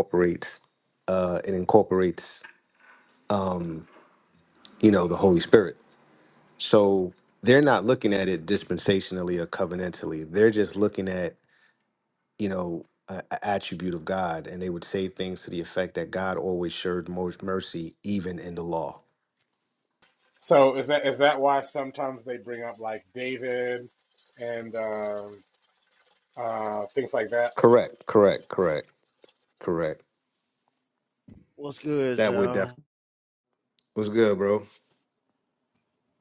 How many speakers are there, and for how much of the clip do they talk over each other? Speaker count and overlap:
three, about 1%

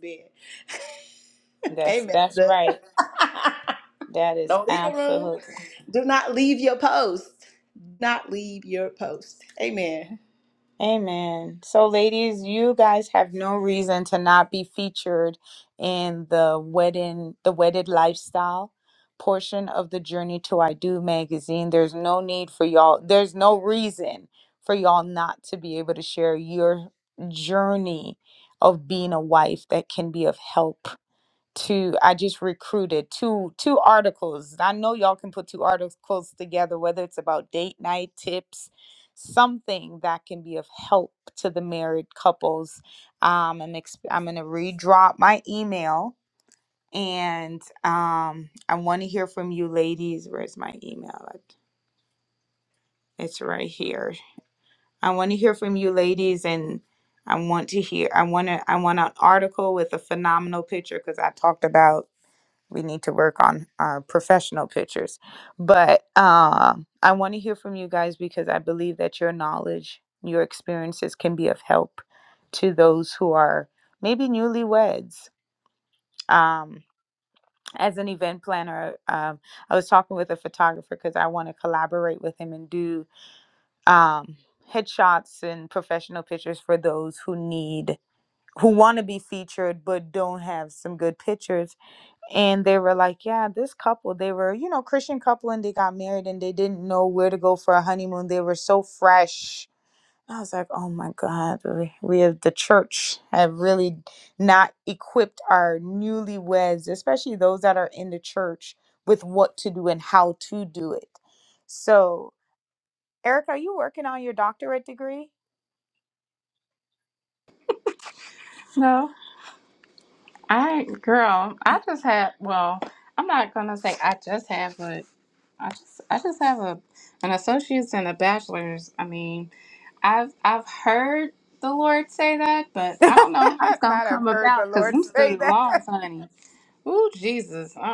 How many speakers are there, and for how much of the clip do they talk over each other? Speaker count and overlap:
three, about 3%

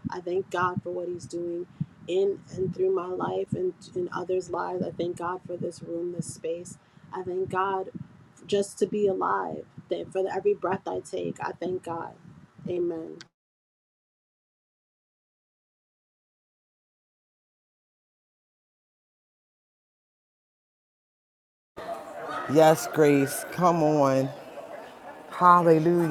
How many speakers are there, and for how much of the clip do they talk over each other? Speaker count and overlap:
two, no overlap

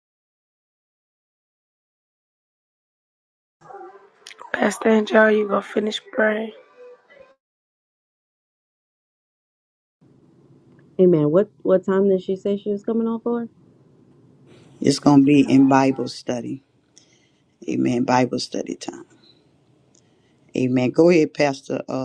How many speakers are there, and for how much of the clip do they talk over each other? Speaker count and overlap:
three, no overlap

